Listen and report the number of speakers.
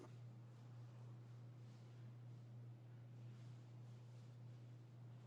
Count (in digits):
0